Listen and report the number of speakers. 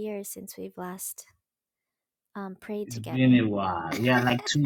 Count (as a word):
two